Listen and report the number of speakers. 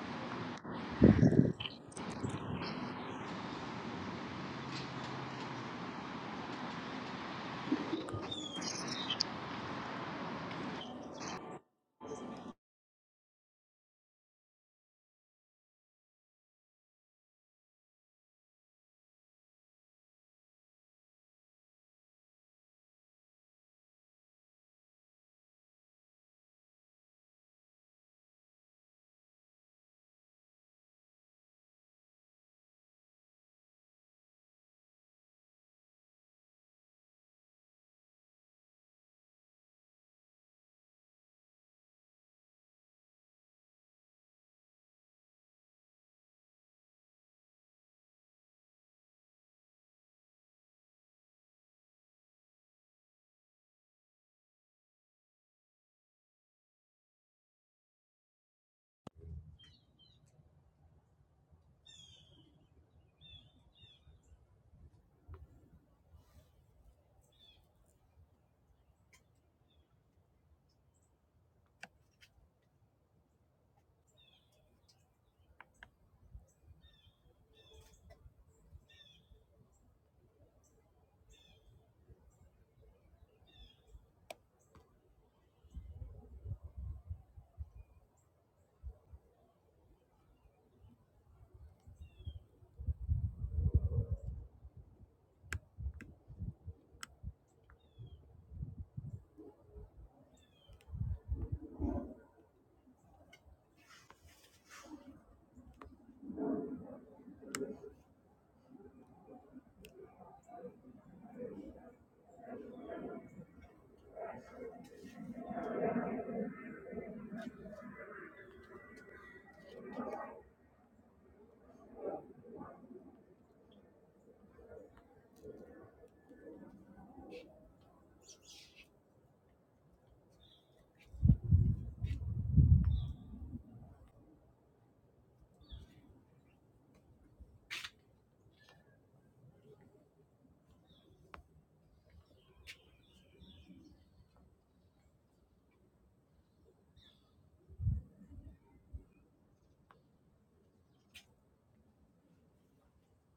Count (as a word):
zero